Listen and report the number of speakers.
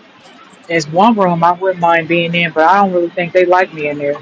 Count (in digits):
1